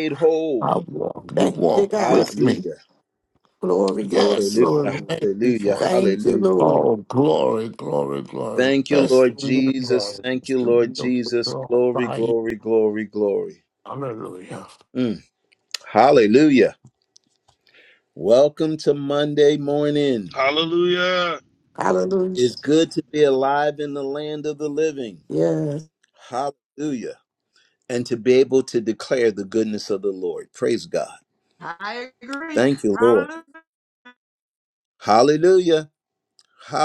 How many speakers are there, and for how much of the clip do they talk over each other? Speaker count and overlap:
5, about 21%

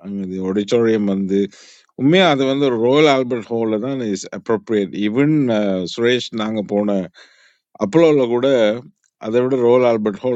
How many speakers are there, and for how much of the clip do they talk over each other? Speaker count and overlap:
1, no overlap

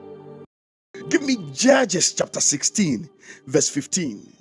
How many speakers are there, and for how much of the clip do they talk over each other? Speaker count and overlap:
1, no overlap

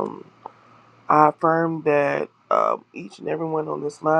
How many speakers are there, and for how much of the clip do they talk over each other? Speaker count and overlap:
1, no overlap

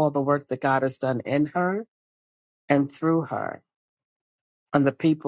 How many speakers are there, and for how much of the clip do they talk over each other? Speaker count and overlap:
1, no overlap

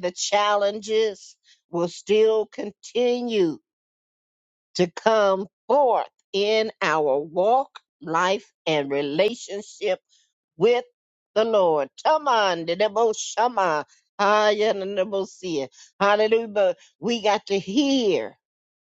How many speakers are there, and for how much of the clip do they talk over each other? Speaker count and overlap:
1, no overlap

